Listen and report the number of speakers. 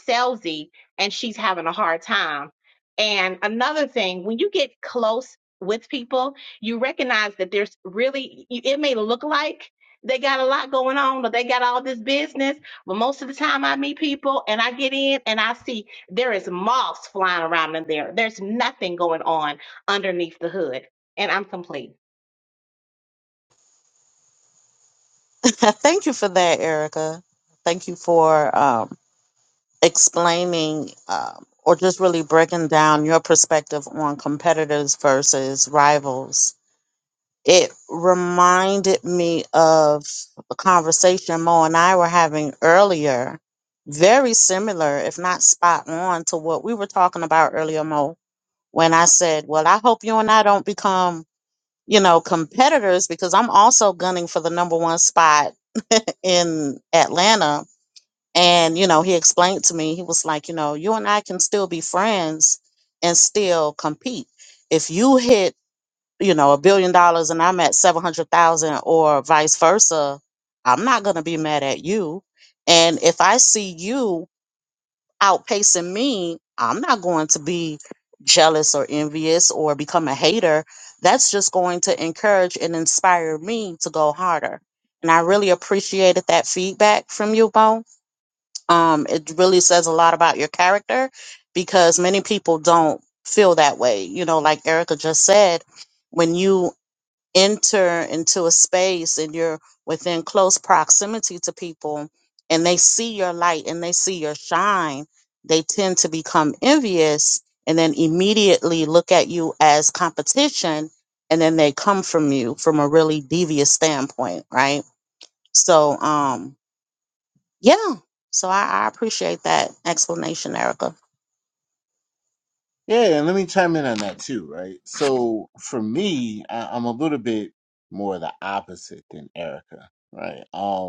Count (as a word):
three